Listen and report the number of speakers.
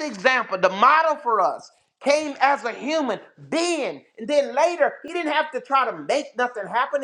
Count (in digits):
1